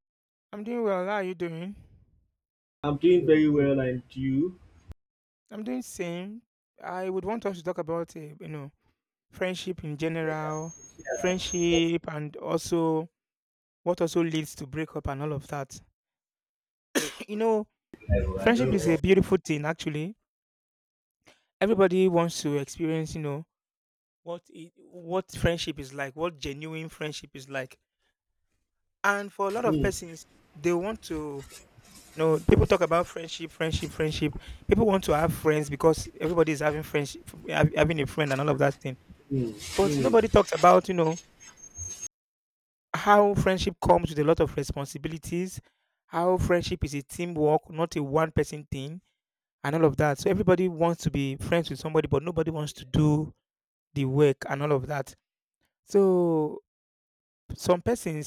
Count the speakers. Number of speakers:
two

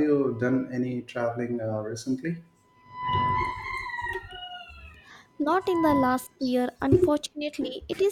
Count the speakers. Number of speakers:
two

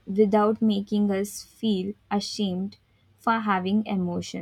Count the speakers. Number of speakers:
one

